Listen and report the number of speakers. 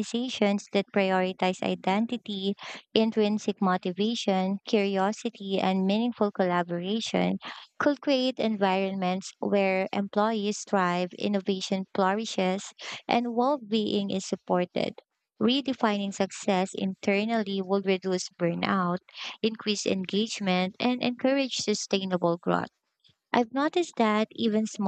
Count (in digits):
1